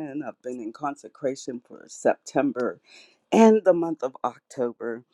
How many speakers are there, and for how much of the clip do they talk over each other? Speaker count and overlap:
1, no overlap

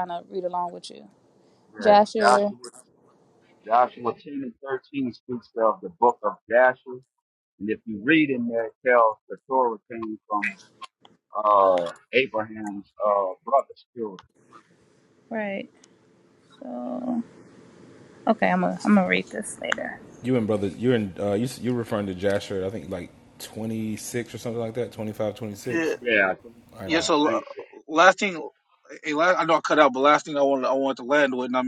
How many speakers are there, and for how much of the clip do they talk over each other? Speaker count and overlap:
4, about 4%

